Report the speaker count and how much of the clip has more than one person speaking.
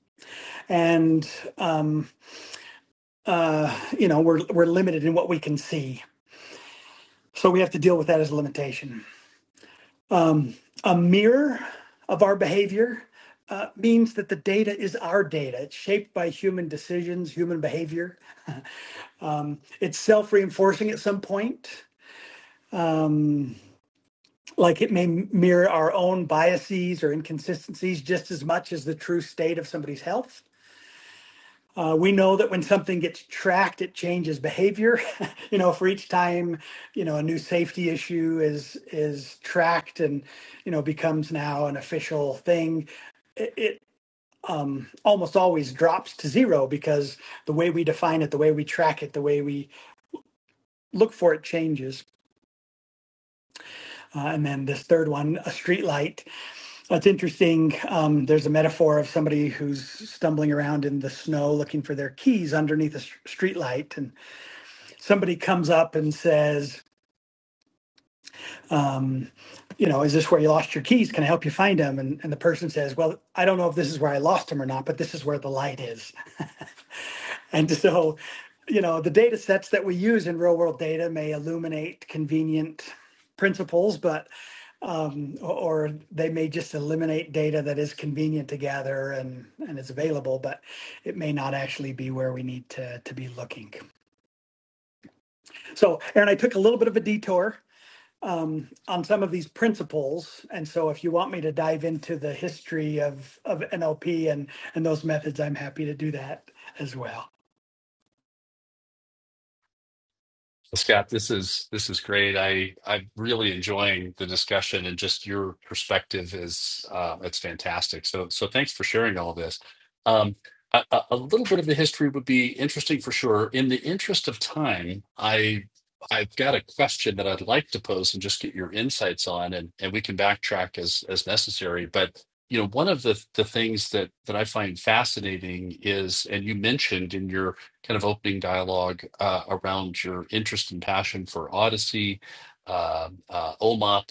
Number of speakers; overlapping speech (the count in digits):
2, no overlap